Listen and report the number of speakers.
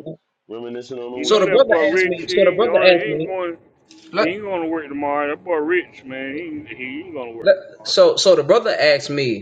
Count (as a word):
three